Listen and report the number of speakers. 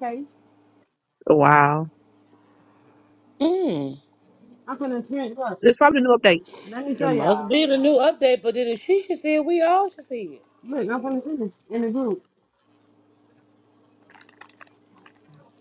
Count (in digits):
3